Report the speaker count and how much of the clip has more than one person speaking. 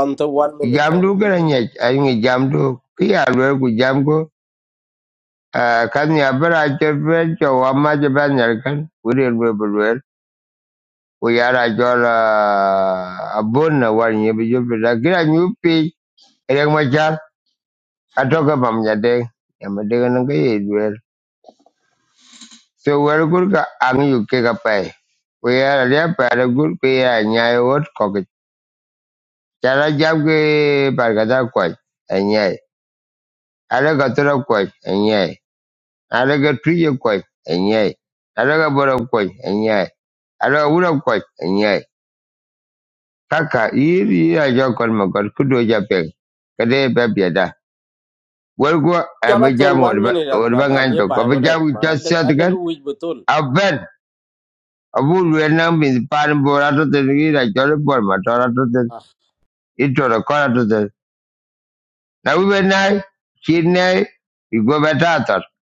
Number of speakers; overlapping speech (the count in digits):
2, about 5%